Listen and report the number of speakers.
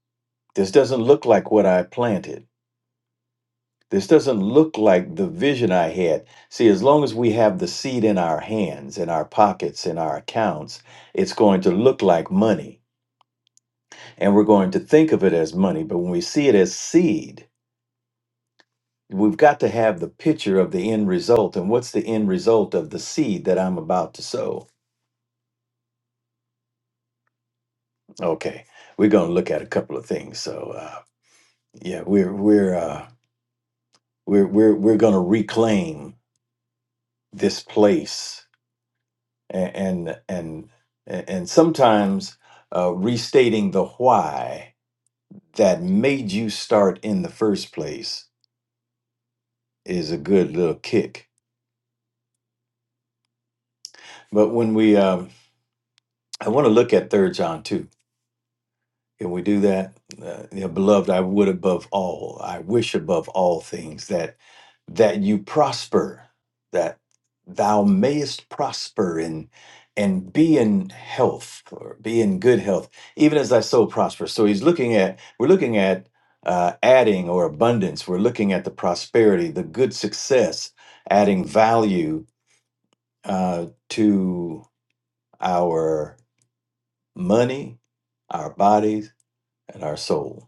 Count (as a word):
one